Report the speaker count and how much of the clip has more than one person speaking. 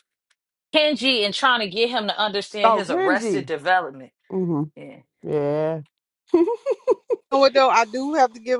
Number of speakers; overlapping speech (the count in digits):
3, about 10%